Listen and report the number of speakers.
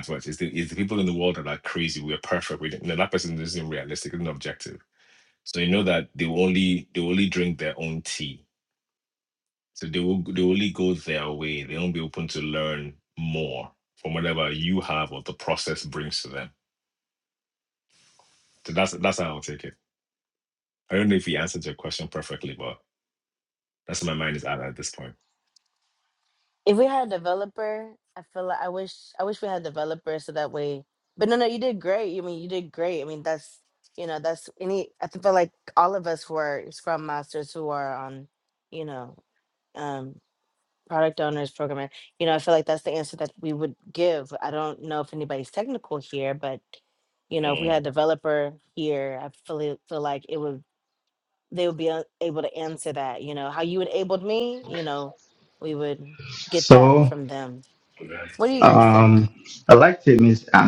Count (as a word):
three